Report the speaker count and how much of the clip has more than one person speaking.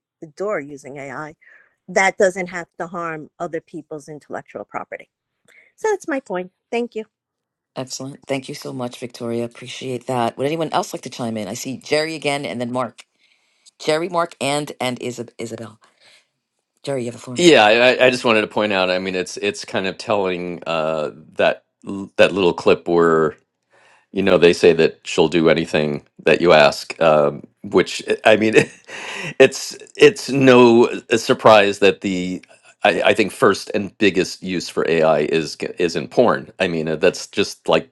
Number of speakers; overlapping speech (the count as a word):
three, under 1%